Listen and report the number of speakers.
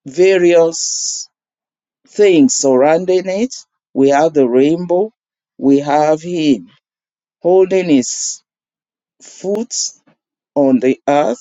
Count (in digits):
1